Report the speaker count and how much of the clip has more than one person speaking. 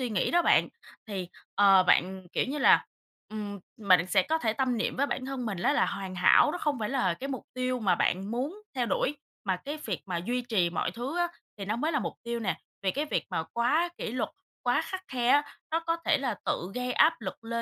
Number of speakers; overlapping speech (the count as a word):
one, no overlap